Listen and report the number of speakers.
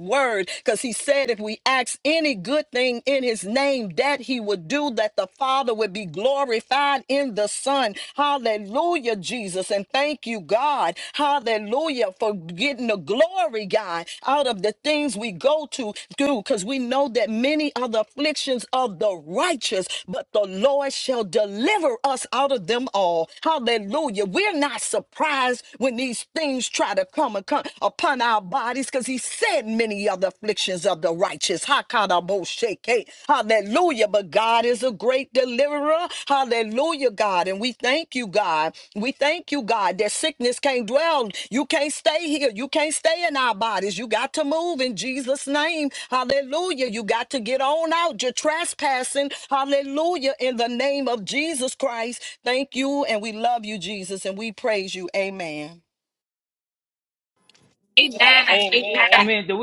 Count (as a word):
two